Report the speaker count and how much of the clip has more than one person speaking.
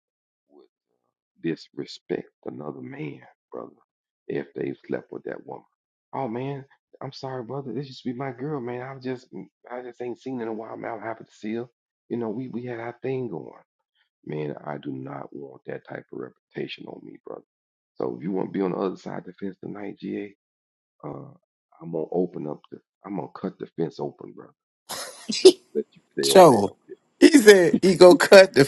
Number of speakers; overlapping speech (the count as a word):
two, about 2%